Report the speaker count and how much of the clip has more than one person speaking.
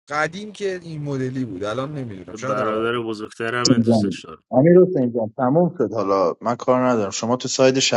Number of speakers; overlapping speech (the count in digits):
3, about 10%